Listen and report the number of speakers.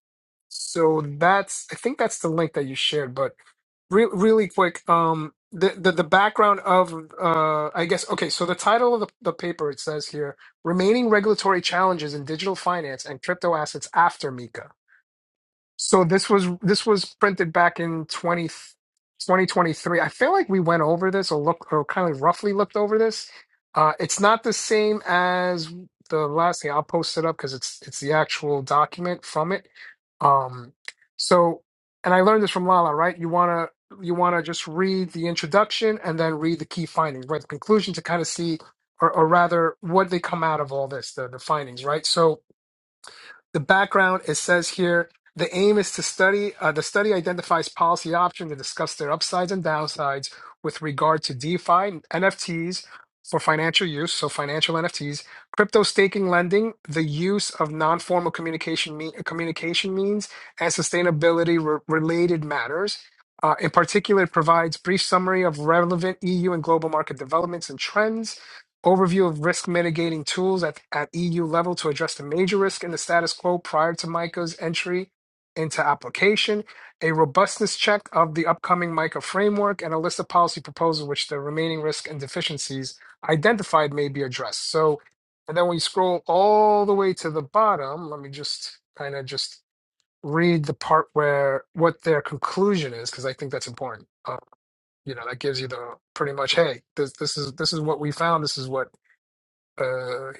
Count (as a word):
one